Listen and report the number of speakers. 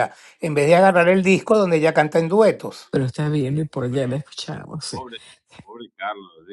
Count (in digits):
3